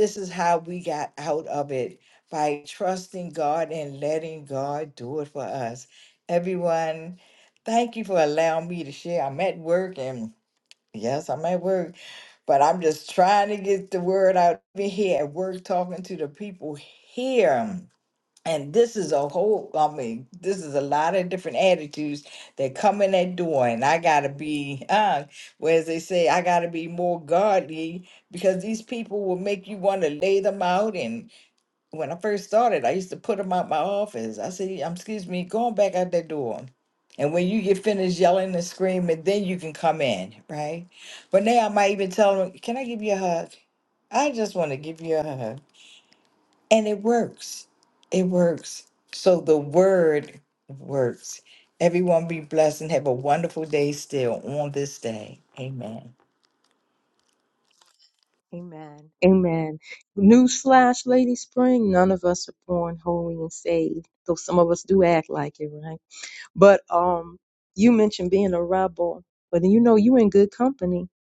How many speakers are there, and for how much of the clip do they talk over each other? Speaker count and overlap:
2, no overlap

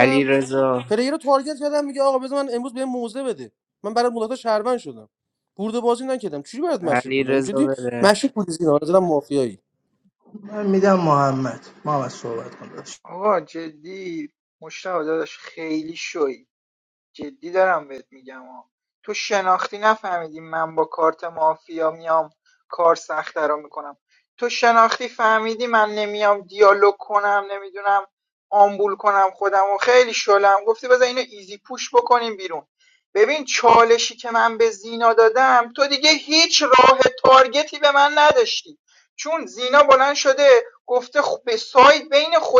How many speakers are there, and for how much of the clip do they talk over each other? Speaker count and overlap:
4, about 4%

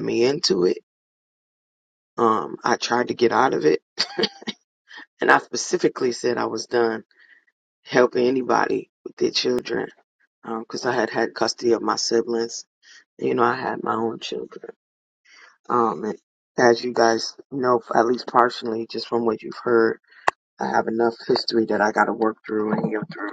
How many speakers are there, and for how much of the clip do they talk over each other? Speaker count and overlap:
1, no overlap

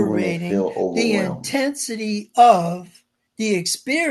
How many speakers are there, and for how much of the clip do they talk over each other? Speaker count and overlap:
2, about 24%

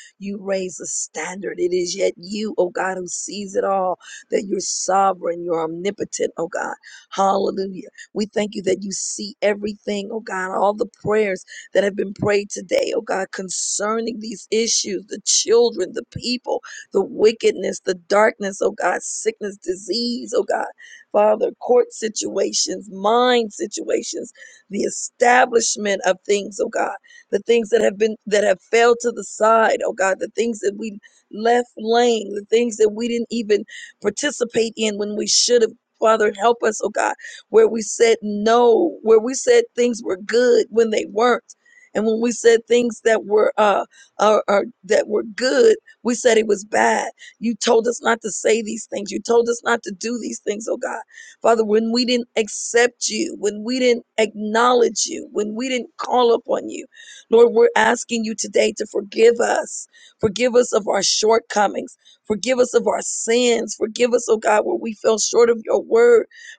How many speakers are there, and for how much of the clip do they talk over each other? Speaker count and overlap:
1, no overlap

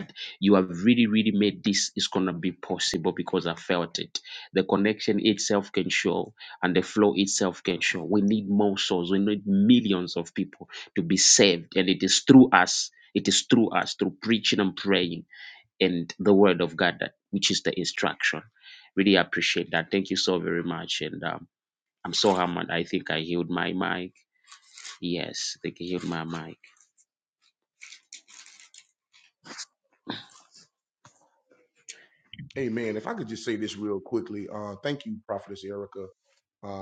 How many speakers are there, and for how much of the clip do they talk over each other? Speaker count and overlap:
2, no overlap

